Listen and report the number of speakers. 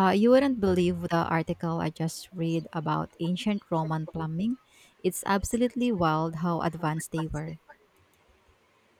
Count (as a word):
one